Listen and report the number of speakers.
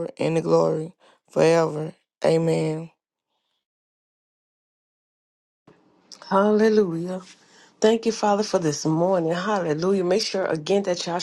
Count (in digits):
2